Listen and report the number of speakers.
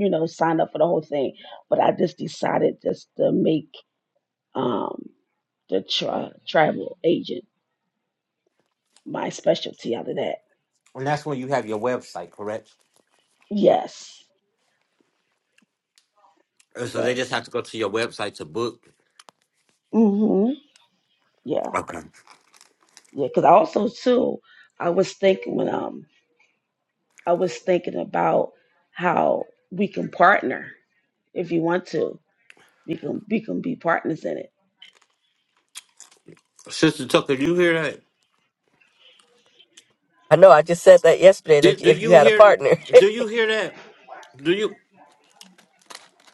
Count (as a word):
three